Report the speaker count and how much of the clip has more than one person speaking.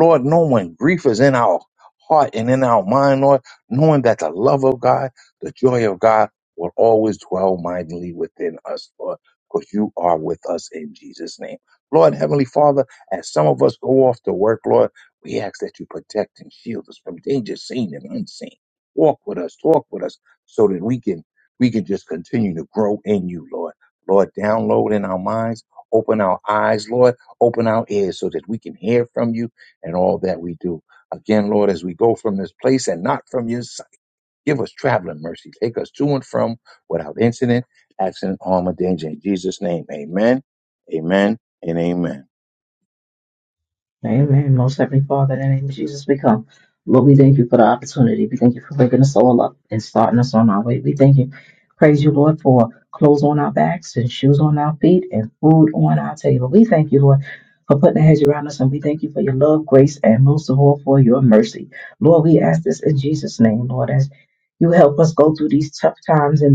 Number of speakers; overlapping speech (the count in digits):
2, no overlap